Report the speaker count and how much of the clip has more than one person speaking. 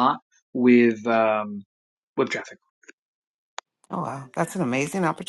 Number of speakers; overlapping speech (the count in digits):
2, no overlap